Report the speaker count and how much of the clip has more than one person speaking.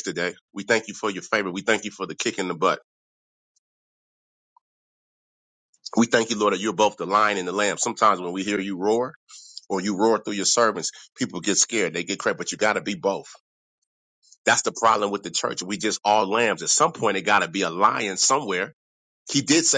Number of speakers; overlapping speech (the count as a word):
one, no overlap